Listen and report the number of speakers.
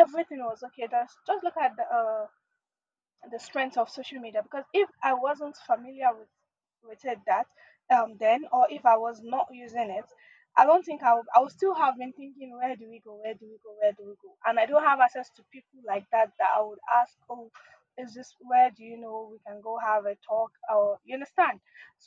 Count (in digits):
1